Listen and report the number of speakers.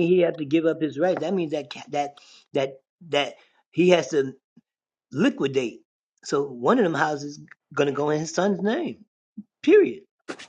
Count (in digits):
1